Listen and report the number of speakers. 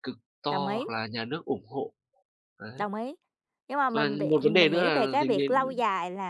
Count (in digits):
2